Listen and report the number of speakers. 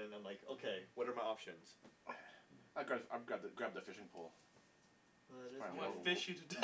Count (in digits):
3